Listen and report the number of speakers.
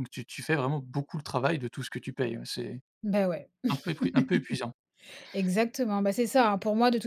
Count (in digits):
2